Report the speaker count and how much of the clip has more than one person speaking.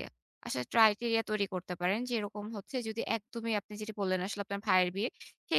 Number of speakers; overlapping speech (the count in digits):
1, no overlap